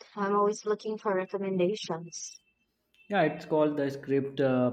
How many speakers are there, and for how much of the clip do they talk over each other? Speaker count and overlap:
2, no overlap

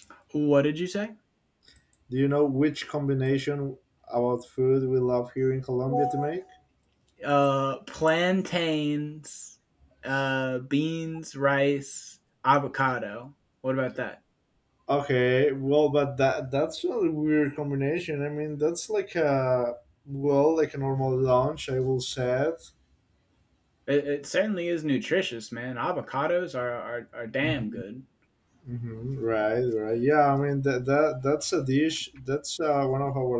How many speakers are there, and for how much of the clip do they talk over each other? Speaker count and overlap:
2, about 1%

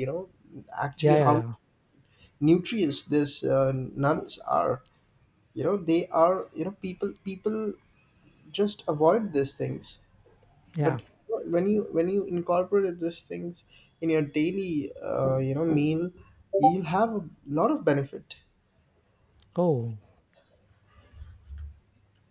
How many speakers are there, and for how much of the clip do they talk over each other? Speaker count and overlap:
2, about 3%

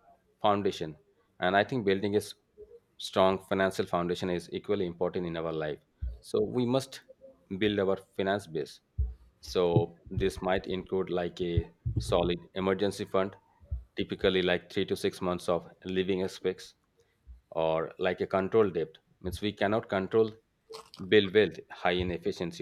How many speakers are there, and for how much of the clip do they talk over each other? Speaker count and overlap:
1, no overlap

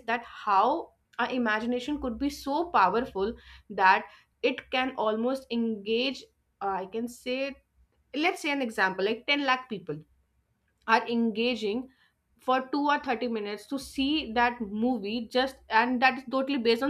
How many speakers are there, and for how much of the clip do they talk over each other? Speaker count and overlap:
1, no overlap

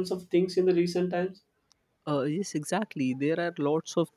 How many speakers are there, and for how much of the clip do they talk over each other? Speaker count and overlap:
2, no overlap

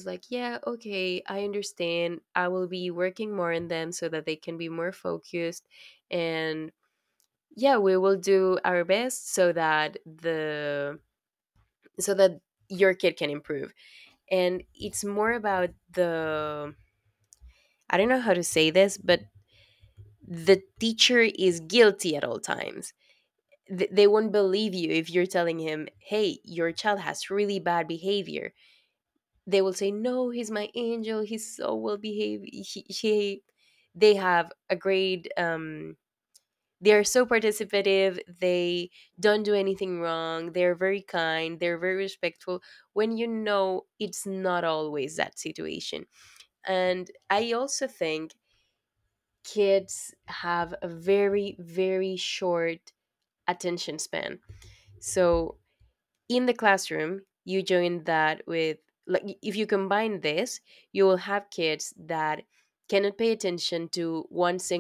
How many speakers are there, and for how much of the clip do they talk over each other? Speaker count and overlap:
1, no overlap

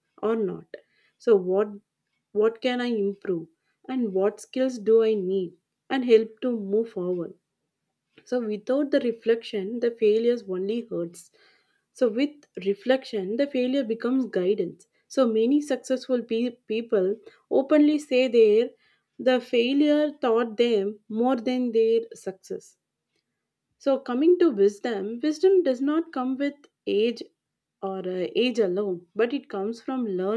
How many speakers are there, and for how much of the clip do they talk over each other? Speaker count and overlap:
1, no overlap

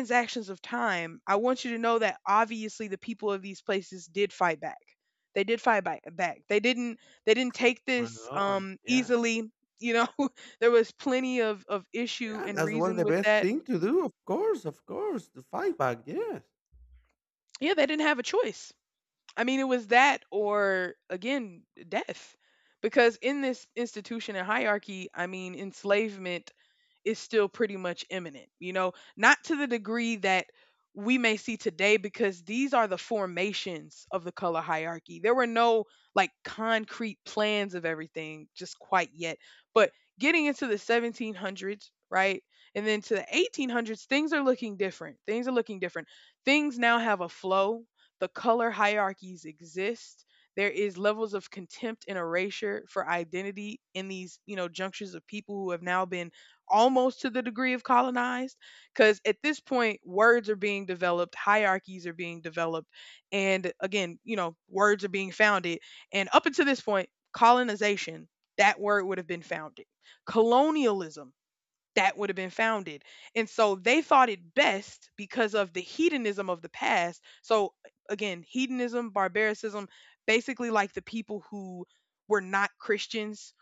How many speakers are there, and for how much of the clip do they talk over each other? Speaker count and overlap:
2, about 3%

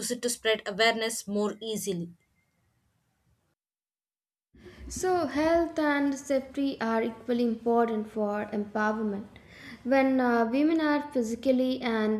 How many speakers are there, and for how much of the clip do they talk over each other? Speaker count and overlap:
2, no overlap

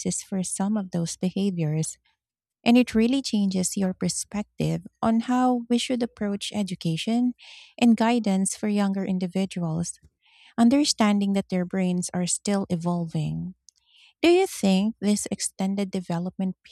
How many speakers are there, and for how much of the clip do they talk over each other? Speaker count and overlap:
1, no overlap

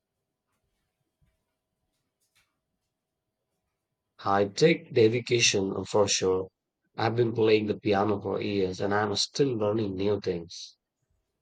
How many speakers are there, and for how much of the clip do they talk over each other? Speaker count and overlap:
1, no overlap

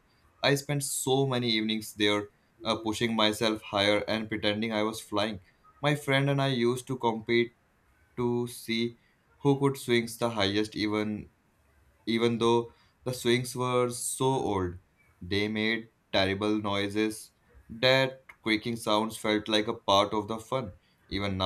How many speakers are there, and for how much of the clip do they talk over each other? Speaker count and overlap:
1, no overlap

